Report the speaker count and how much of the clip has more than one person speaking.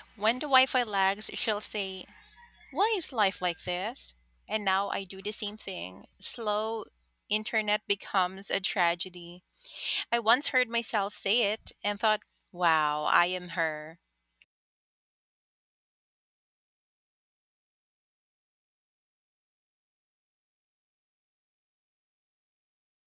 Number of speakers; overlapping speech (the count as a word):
one, no overlap